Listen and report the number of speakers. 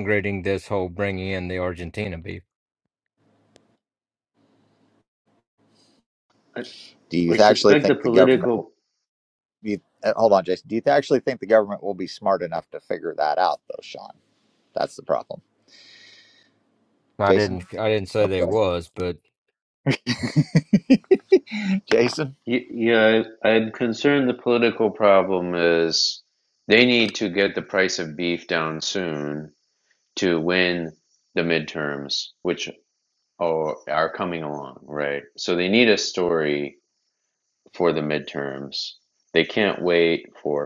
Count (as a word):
three